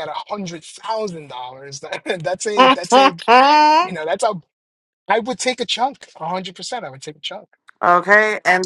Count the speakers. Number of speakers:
two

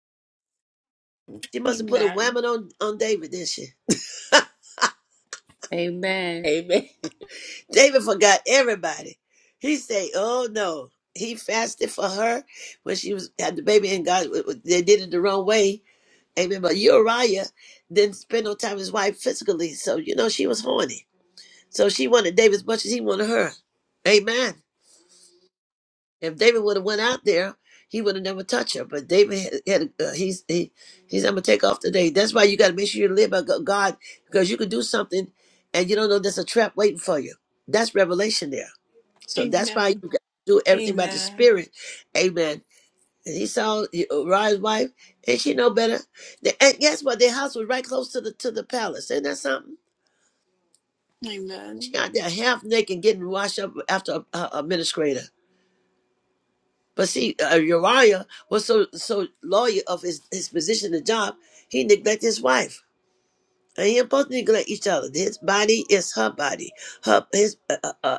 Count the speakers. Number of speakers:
three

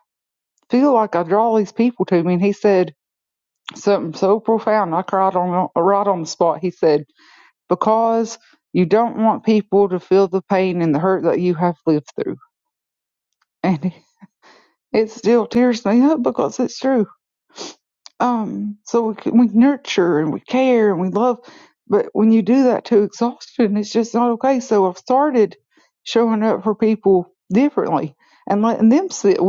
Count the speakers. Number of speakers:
one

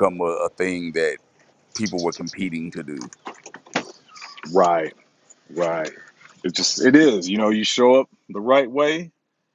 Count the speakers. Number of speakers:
two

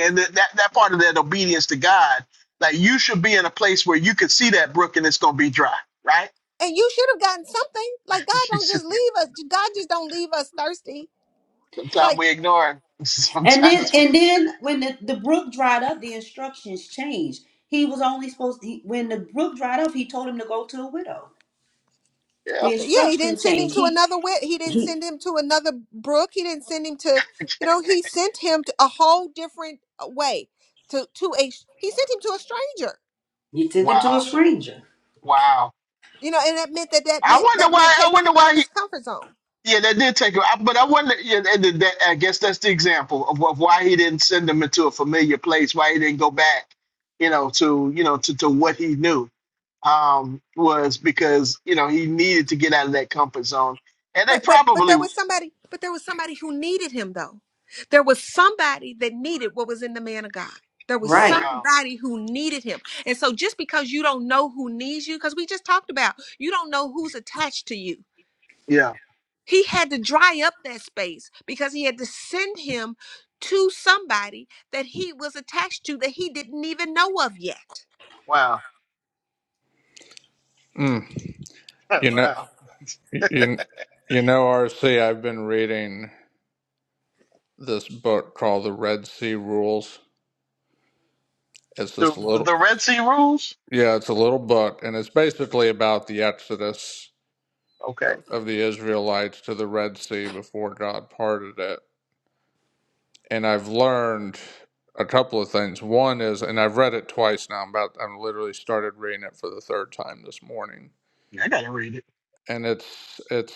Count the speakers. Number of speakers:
four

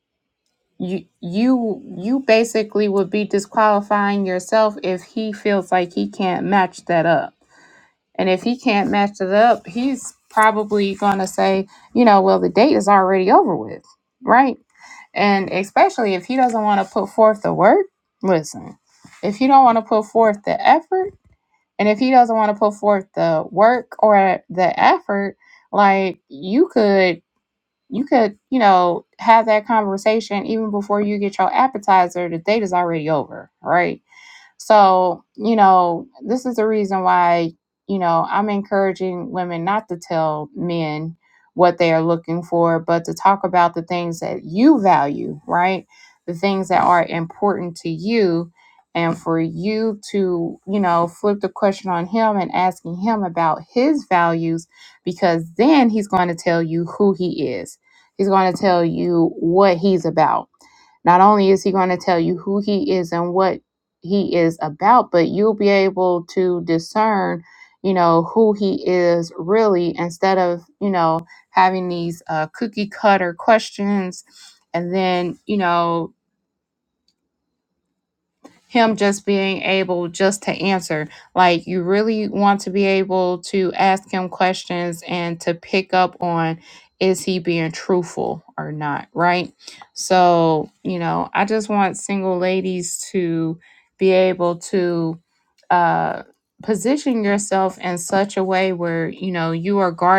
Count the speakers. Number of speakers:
one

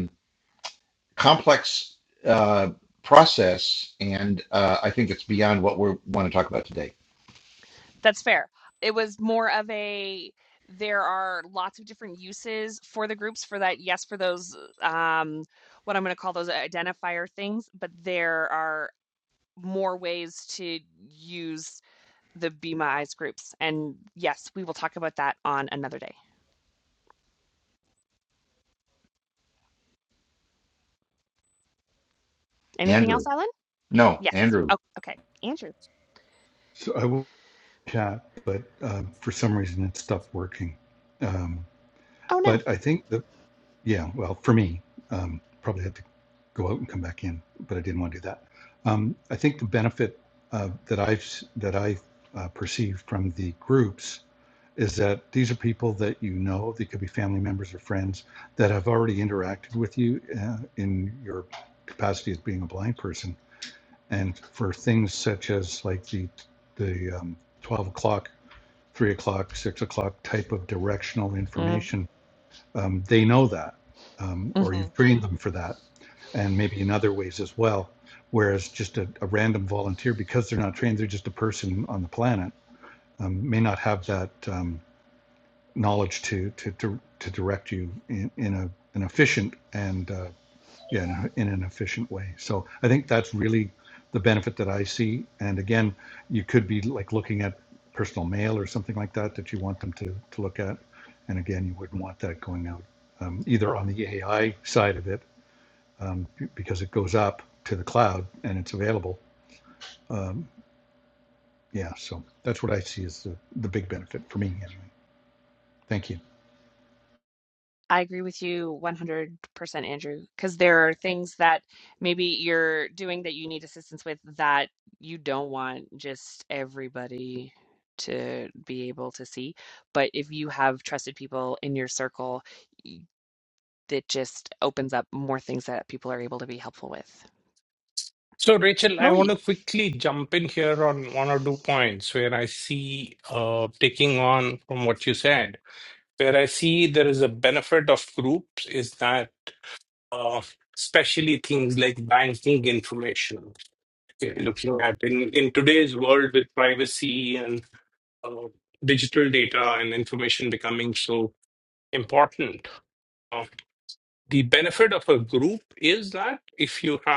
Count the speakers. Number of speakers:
four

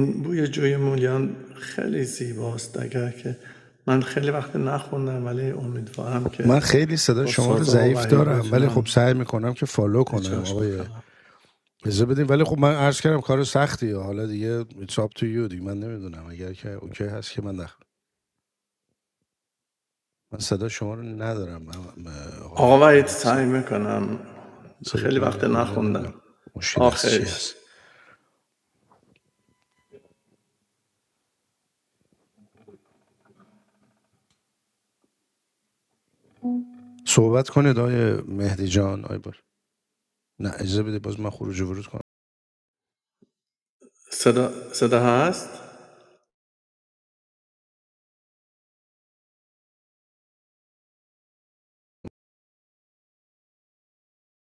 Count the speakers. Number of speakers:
two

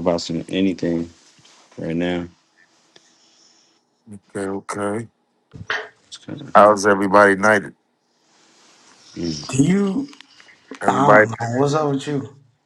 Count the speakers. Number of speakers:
three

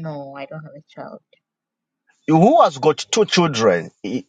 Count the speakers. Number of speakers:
two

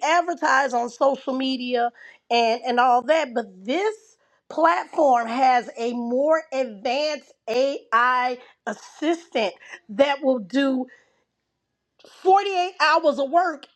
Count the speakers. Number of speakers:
one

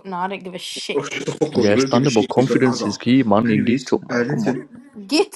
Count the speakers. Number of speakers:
three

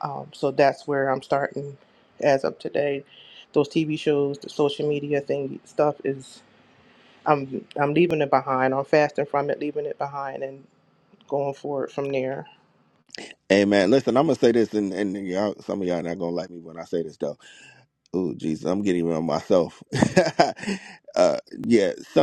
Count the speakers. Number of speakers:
two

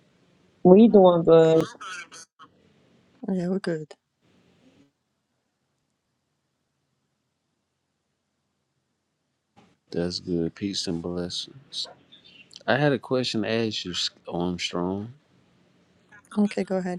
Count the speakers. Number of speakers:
three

